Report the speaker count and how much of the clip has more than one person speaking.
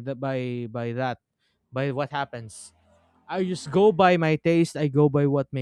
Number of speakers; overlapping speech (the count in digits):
1, no overlap